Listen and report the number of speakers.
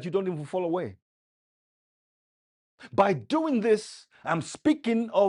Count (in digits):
1